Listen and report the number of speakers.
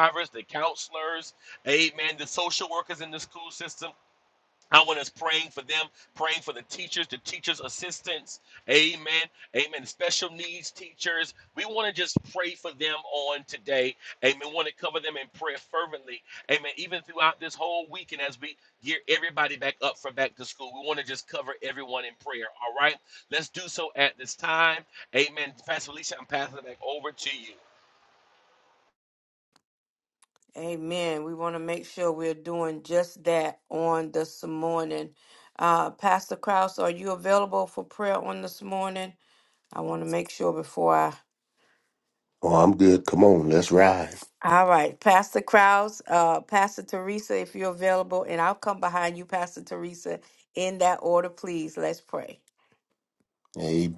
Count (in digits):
3